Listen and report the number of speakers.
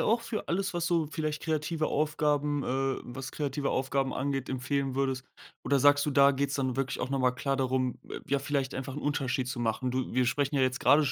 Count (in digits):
1